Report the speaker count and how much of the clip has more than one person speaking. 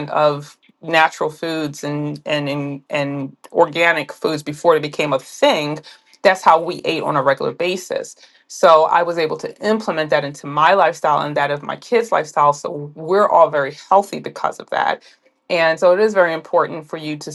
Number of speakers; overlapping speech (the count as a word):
one, no overlap